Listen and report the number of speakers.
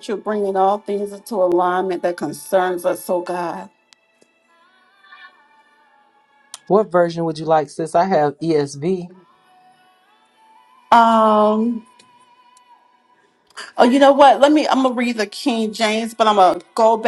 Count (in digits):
2